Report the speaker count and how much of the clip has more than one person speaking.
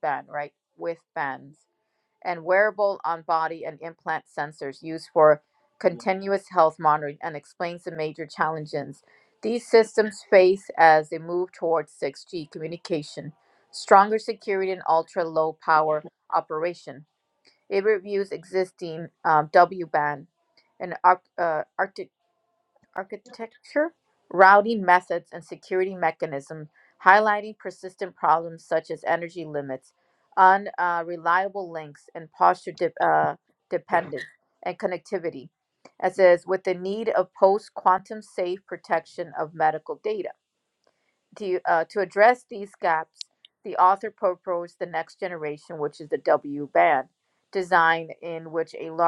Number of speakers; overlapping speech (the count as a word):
one, no overlap